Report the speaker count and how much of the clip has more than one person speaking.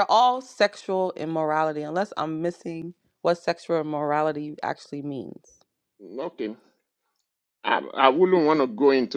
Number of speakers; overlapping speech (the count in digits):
2, no overlap